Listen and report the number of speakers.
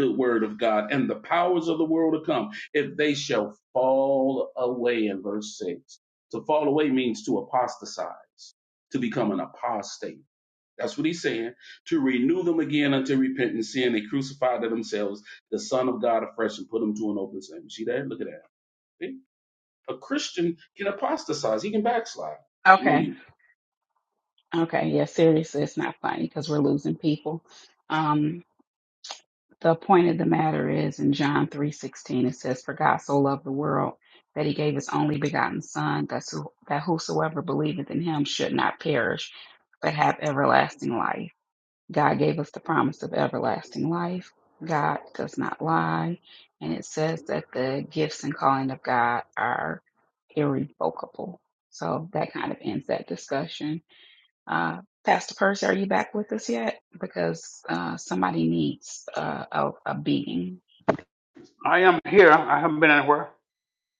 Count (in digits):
3